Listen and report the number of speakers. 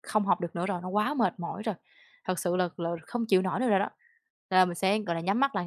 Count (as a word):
one